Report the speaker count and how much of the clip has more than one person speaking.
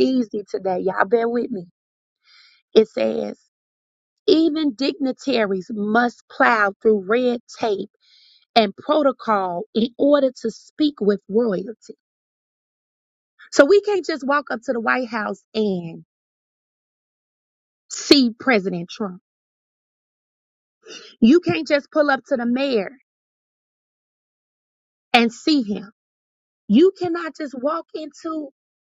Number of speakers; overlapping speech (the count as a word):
one, no overlap